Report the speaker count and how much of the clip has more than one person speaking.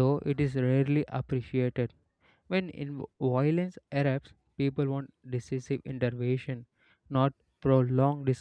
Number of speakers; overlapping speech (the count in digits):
1, no overlap